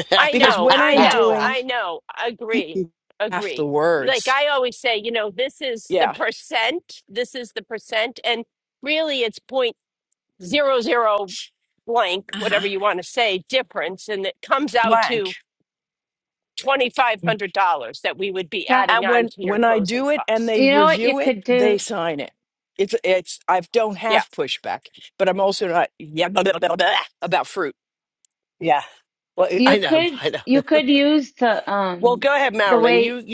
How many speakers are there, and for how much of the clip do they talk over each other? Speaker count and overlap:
4, about 24%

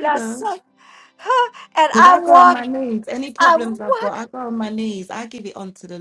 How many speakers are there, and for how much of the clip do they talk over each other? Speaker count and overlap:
2, about 25%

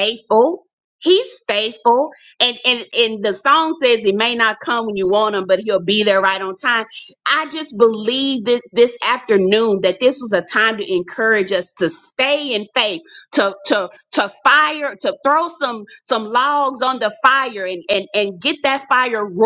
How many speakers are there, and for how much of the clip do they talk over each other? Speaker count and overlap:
1, no overlap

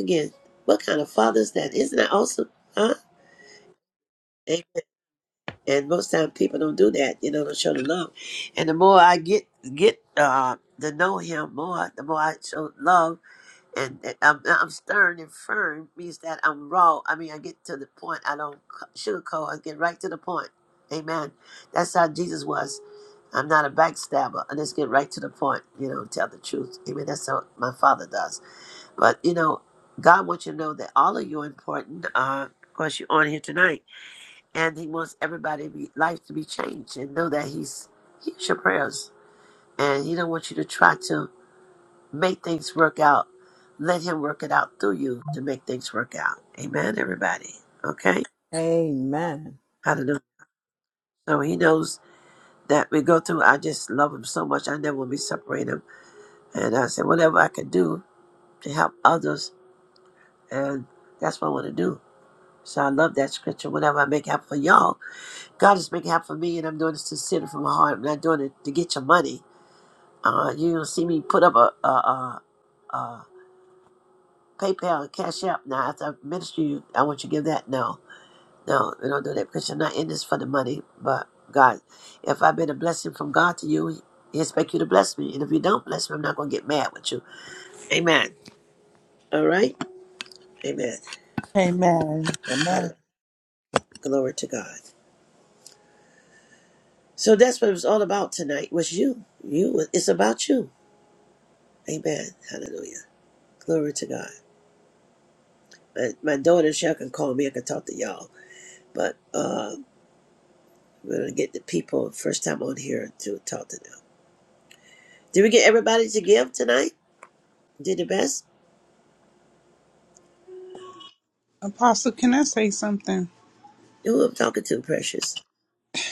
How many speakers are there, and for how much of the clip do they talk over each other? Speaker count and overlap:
4, under 1%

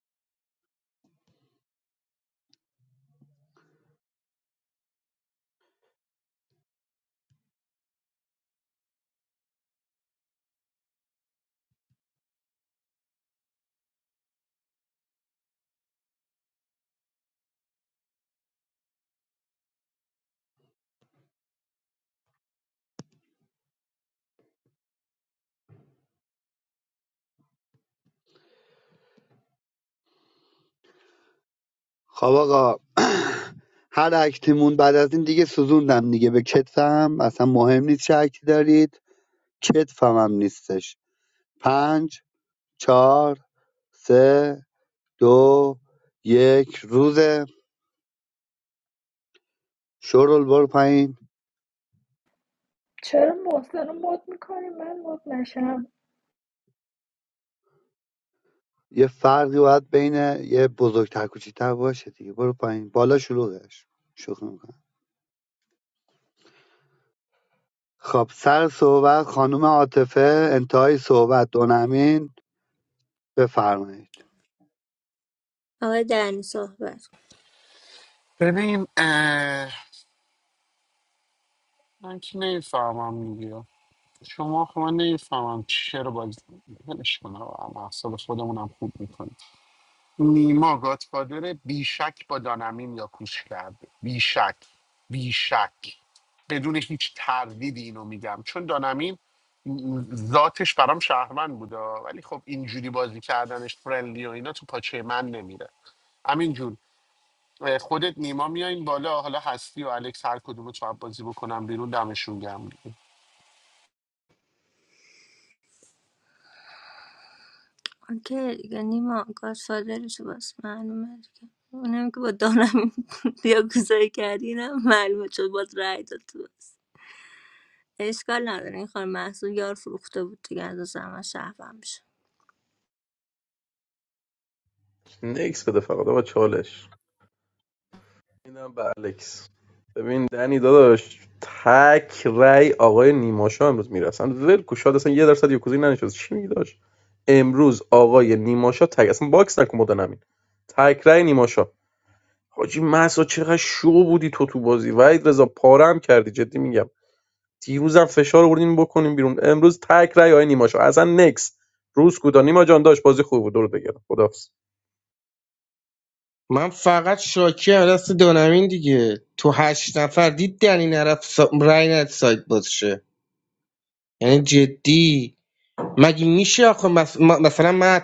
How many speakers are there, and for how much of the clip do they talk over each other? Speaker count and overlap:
6, no overlap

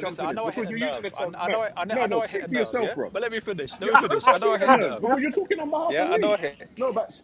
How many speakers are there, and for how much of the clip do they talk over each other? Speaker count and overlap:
2, about 66%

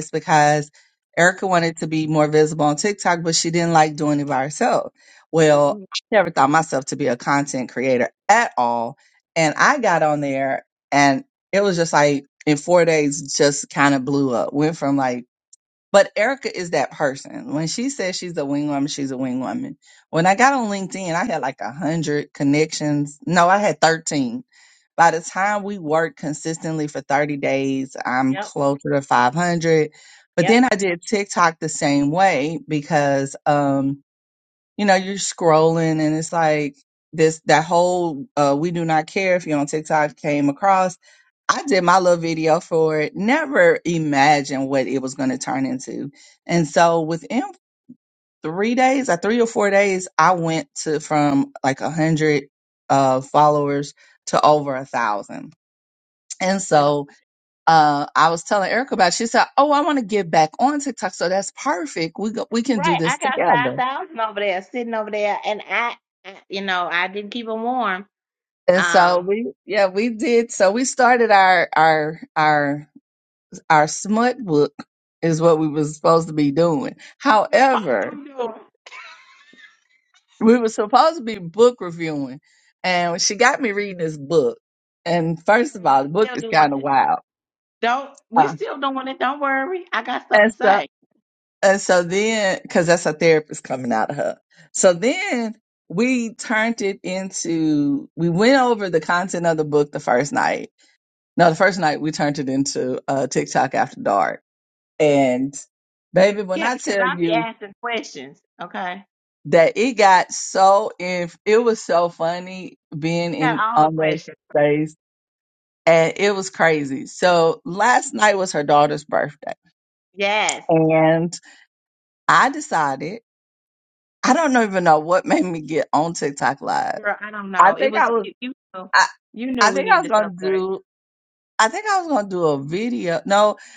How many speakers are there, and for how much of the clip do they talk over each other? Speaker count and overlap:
2, about 6%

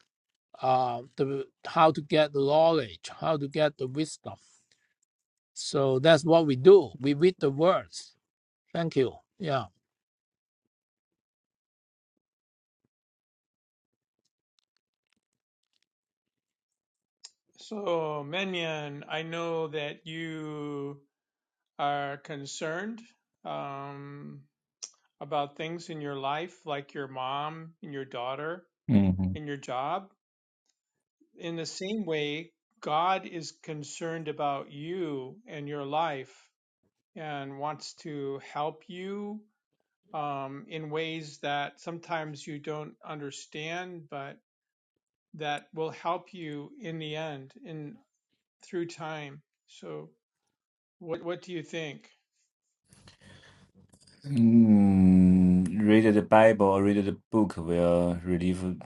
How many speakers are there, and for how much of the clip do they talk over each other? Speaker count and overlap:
3, no overlap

